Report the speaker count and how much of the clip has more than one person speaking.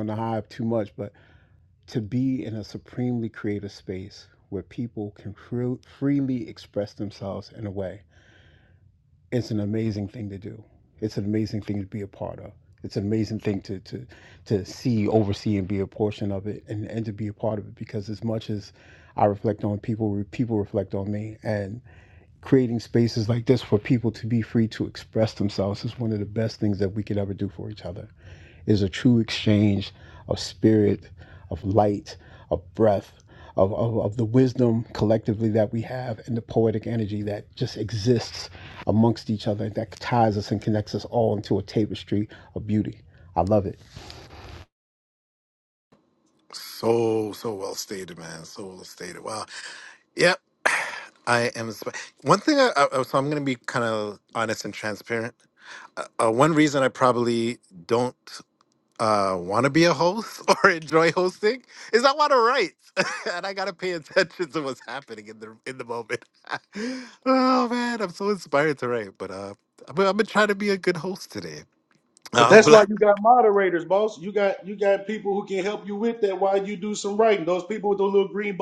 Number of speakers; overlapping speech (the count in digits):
3, about 1%